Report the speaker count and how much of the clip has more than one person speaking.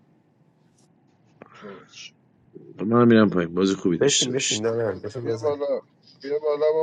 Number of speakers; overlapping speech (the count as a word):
three, about 13%